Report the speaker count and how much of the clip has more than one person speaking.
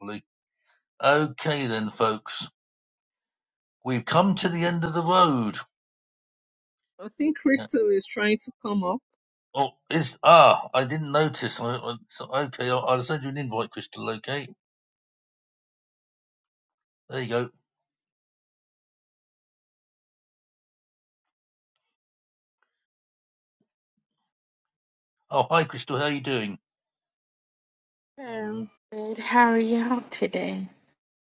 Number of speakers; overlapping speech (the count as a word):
three, no overlap